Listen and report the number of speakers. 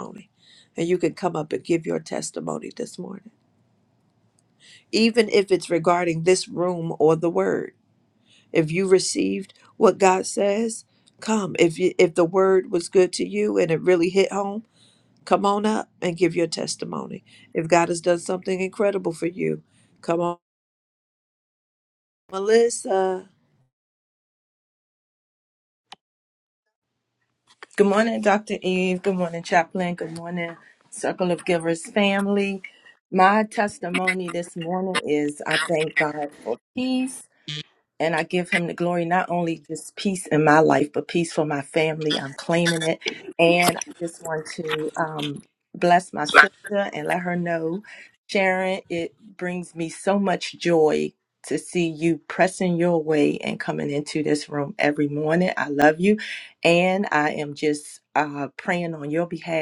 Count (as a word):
two